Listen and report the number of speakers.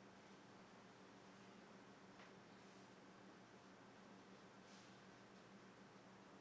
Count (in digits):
0